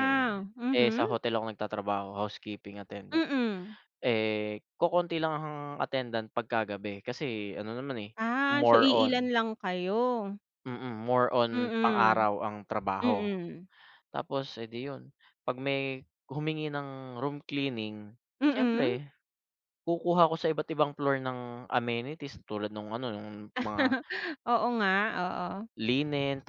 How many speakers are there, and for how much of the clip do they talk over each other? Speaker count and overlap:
2, about 11%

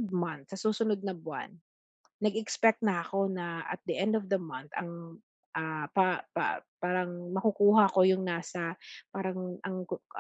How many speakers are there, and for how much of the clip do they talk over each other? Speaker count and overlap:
1, no overlap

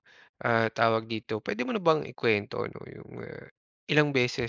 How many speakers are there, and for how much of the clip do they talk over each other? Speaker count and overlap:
1, no overlap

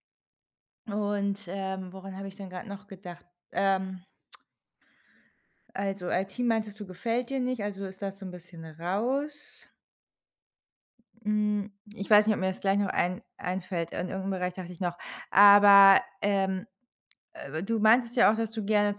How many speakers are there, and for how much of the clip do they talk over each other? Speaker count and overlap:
1, no overlap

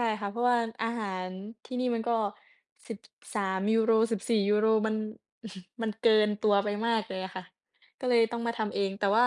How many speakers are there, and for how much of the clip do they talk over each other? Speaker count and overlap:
1, no overlap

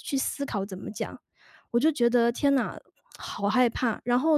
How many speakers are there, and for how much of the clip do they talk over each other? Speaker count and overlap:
1, no overlap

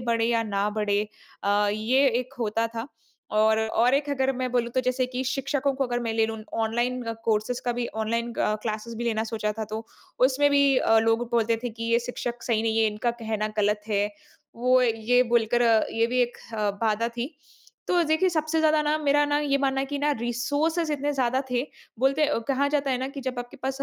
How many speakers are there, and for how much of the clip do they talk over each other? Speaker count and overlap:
1, no overlap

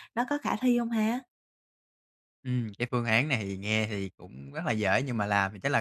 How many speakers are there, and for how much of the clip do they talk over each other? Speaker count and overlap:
2, no overlap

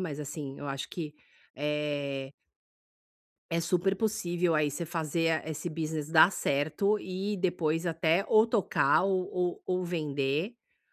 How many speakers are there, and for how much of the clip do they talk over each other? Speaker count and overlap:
1, no overlap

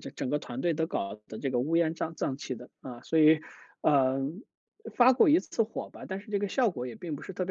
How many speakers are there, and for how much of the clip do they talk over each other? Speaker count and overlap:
1, no overlap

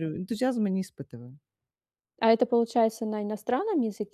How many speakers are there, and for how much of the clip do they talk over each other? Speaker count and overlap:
2, no overlap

